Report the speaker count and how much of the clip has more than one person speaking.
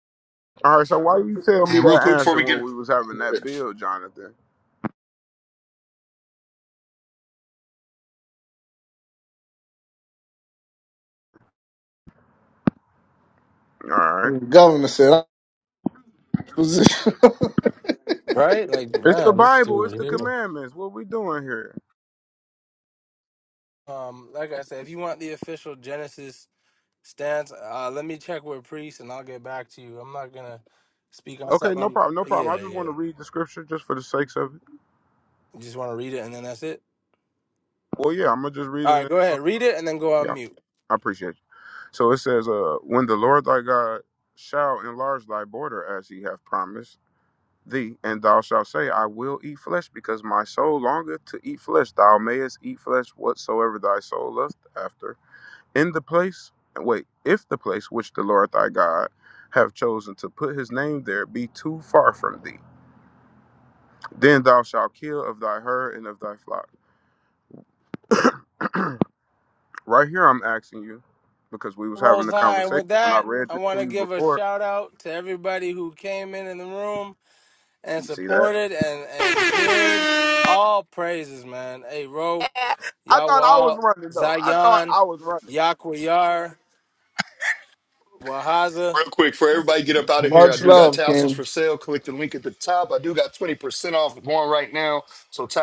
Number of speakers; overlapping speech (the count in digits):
4, about 11%